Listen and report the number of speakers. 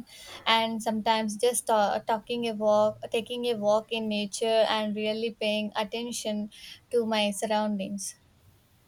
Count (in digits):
1